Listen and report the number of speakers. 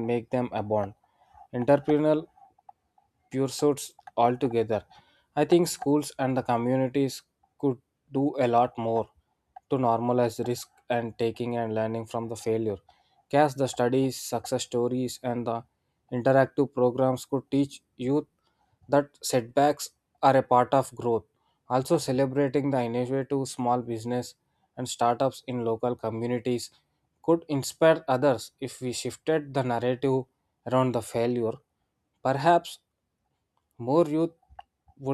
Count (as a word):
one